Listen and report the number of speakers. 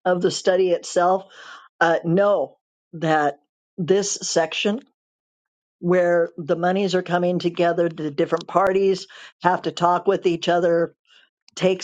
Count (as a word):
one